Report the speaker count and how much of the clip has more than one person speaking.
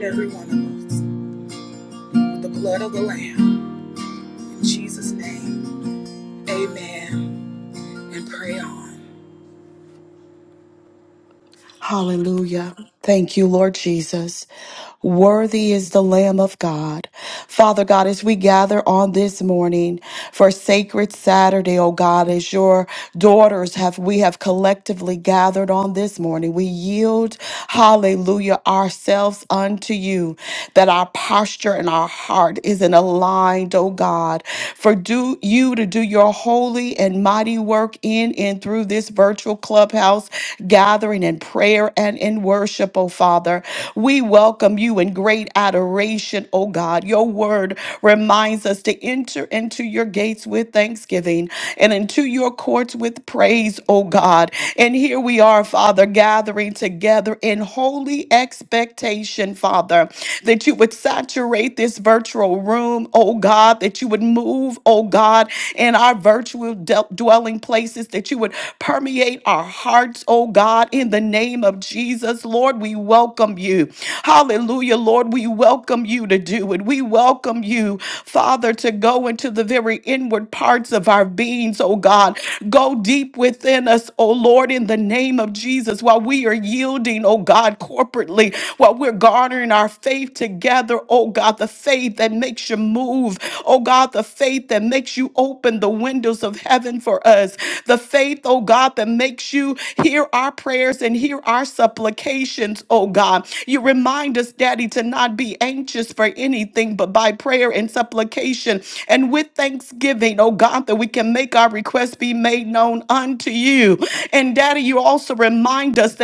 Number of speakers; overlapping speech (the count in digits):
2, no overlap